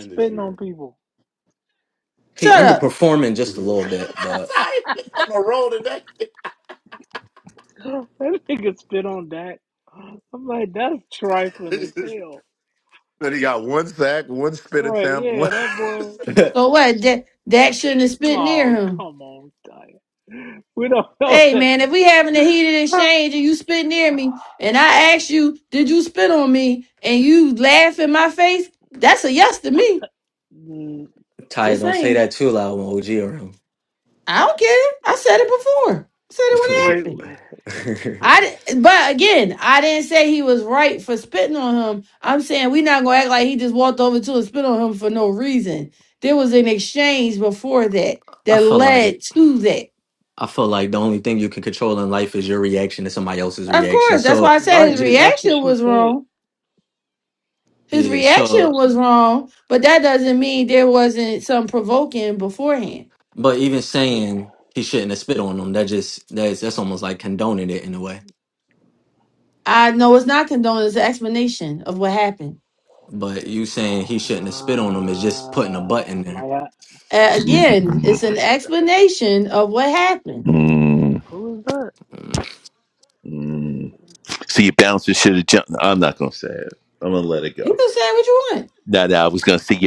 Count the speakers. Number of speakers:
5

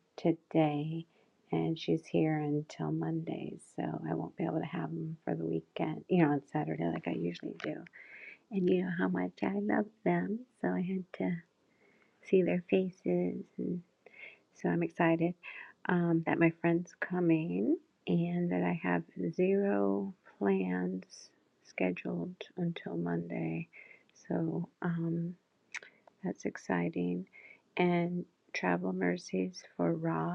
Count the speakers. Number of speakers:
1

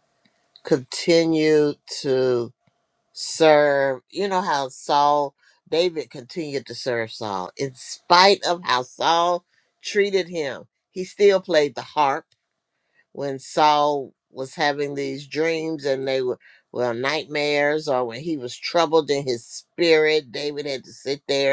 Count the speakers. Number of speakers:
1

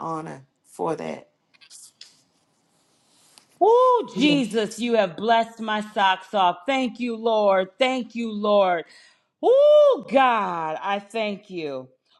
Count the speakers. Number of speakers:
2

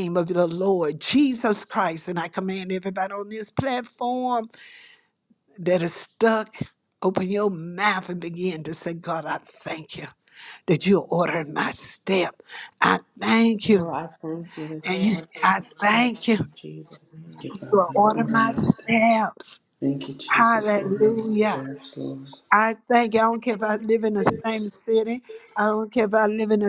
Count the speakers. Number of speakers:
3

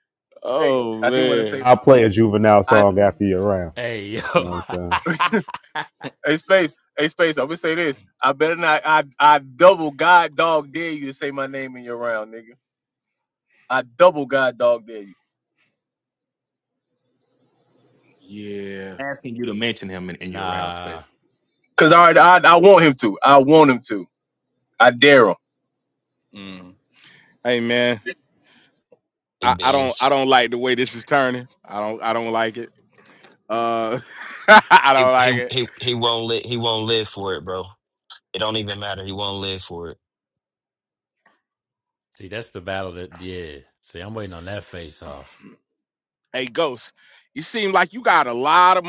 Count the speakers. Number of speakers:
6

